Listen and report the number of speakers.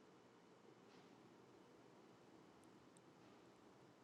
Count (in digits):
0